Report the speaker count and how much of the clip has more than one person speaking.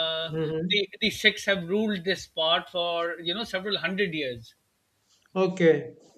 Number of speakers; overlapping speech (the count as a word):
two, about 1%